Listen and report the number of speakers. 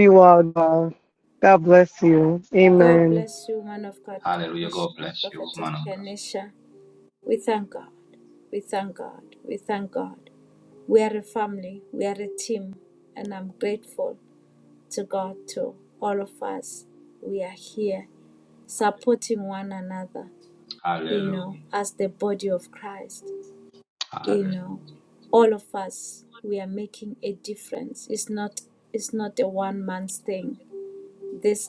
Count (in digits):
3